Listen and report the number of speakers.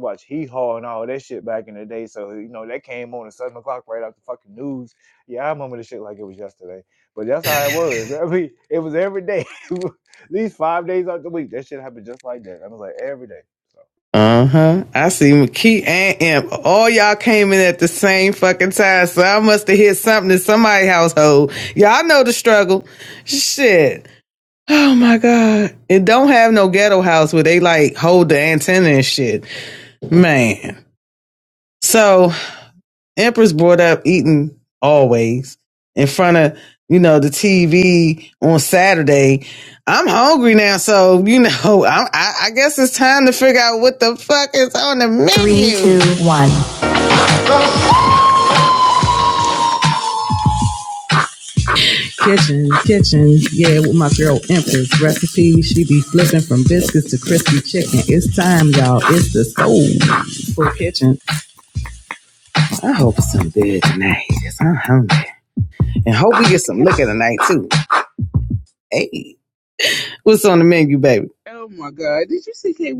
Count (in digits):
3